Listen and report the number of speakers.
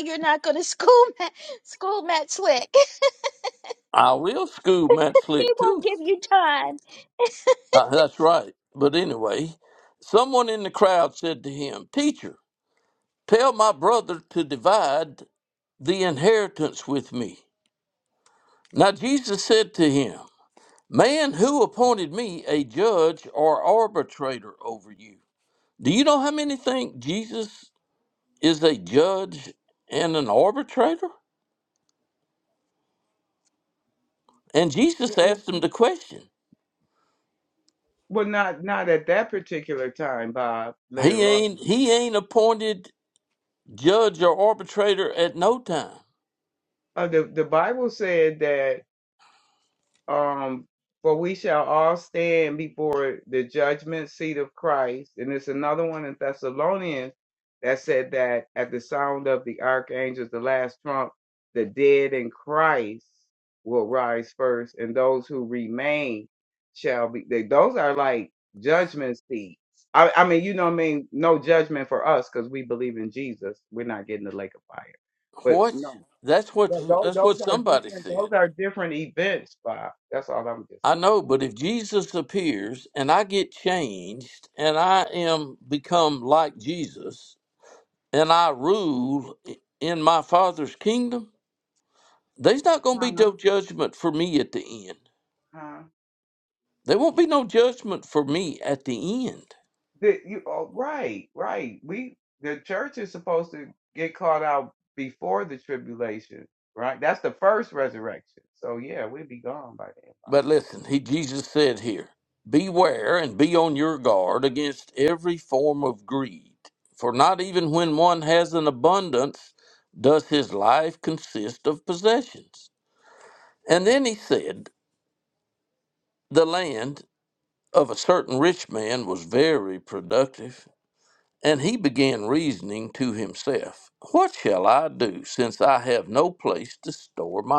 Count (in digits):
3